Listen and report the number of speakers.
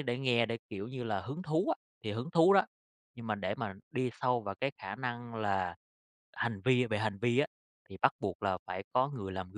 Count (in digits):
1